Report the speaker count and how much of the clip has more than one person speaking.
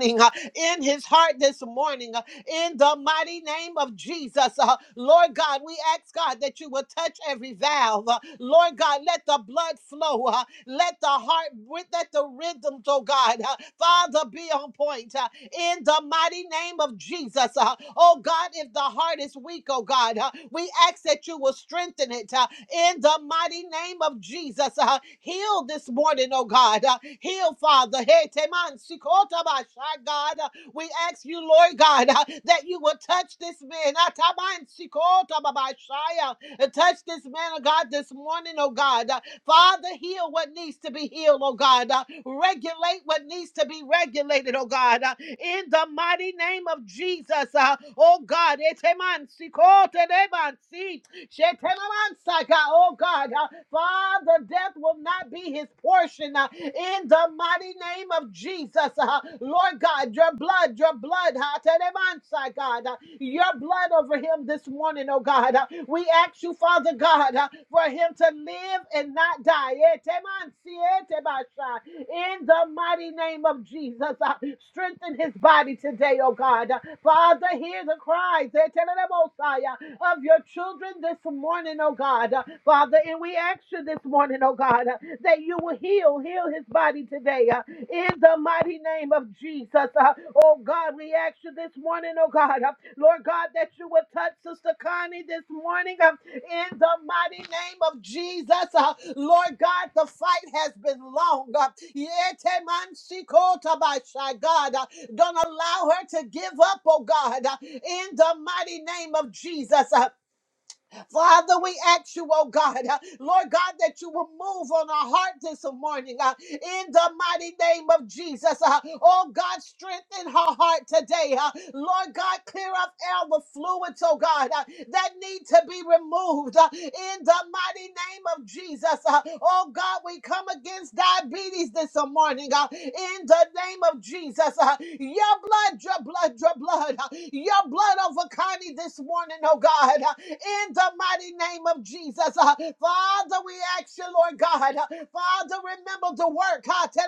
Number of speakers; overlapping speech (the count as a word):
one, no overlap